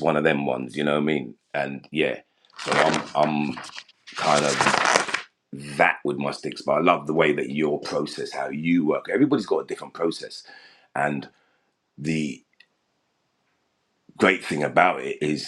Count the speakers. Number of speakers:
1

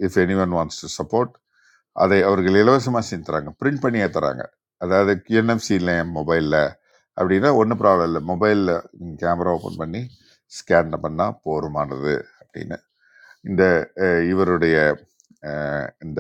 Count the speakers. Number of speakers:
1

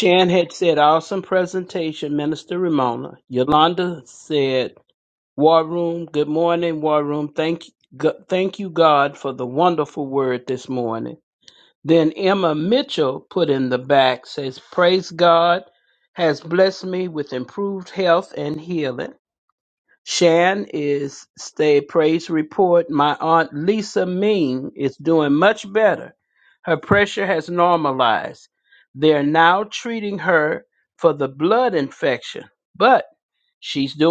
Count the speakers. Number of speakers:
1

